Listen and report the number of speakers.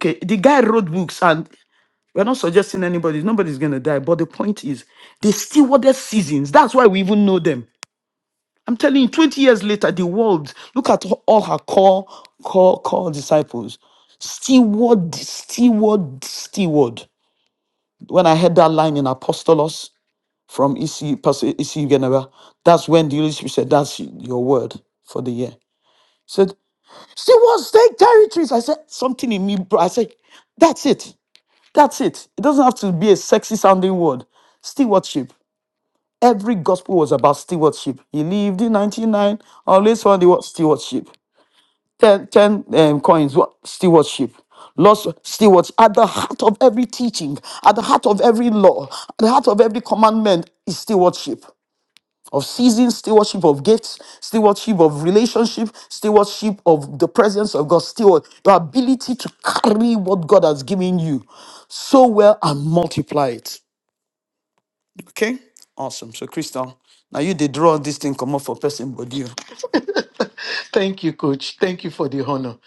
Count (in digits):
2